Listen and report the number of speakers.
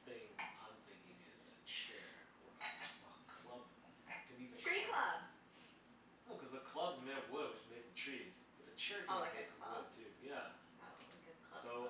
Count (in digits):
2